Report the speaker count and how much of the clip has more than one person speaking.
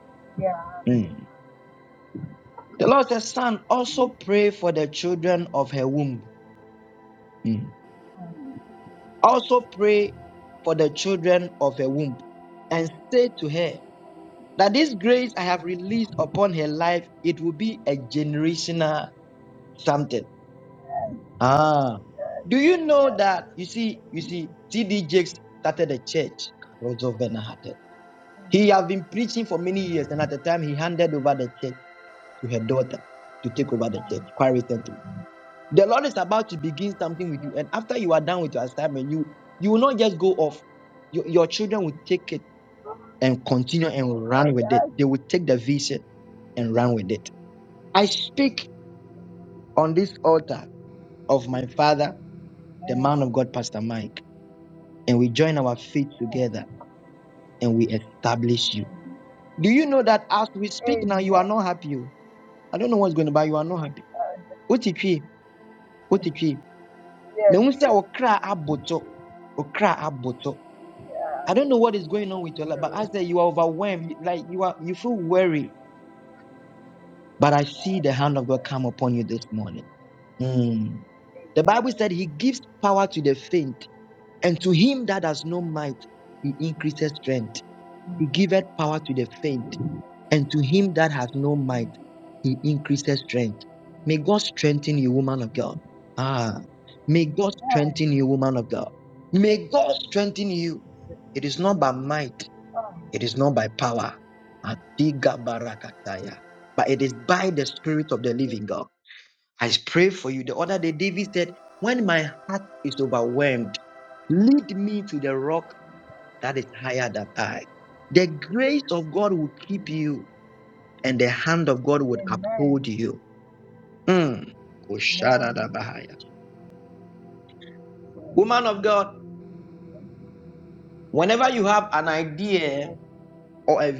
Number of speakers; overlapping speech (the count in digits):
2, about 4%